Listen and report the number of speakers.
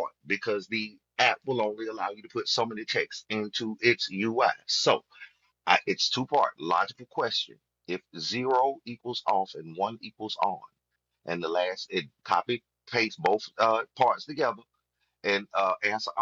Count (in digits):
1